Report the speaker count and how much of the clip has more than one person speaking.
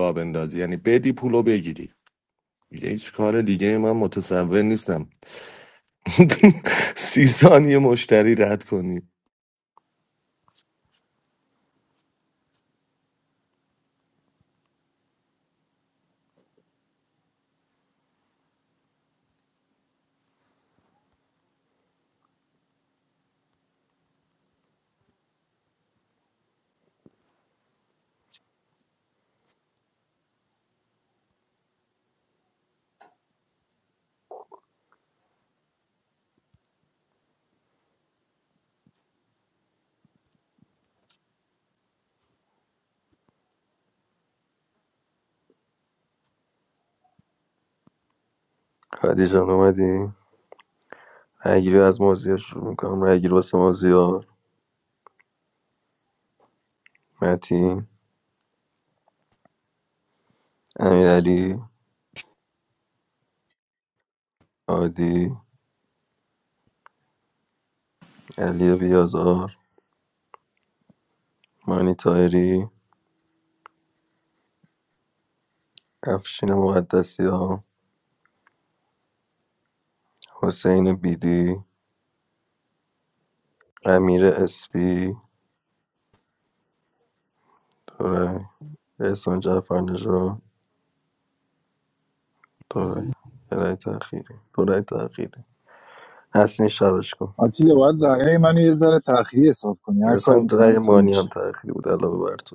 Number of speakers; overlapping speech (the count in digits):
3, about 1%